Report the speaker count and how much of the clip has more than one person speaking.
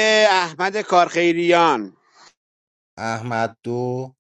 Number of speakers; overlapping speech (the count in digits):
2, no overlap